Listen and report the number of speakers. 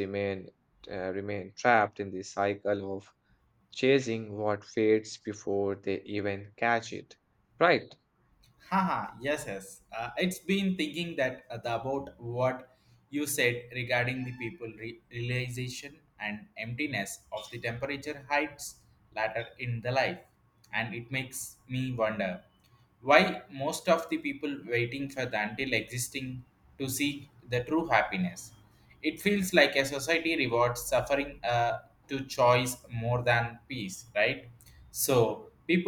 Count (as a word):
two